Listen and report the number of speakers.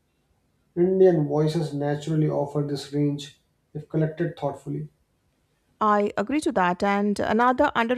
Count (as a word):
two